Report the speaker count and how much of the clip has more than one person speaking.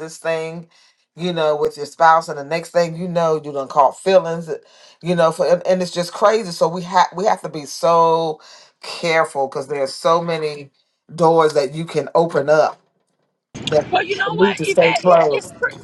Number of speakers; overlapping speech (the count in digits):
2, about 8%